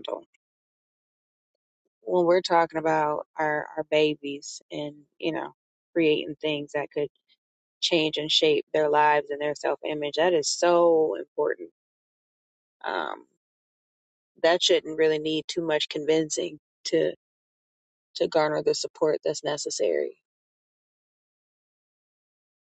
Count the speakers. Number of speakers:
one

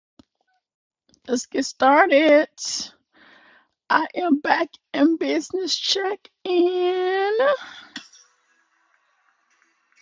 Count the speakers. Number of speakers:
one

